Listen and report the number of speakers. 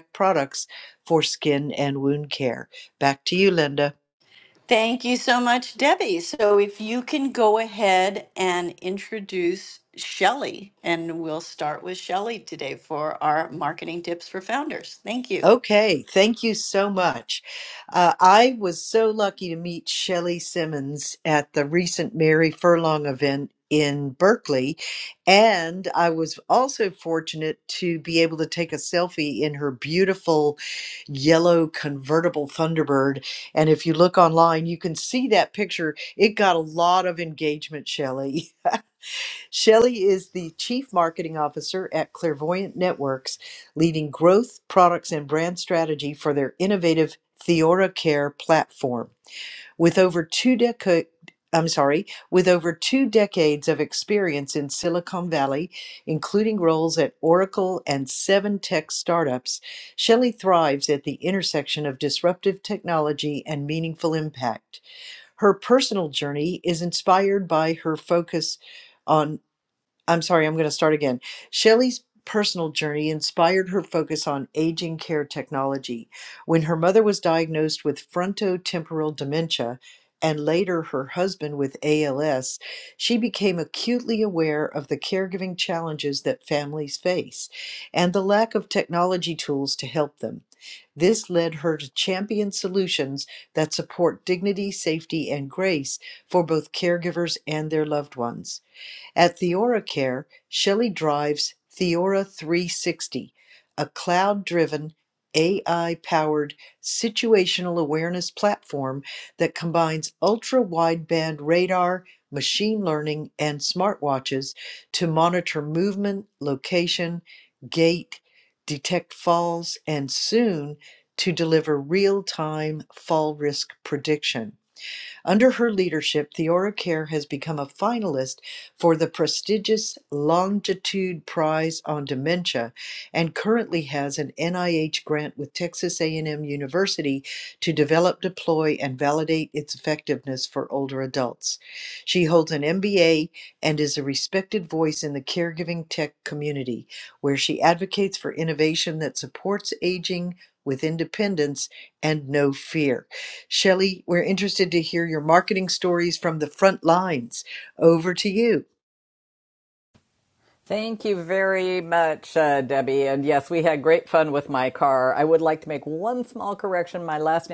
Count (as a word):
three